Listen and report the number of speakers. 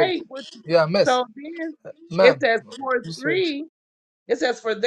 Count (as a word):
two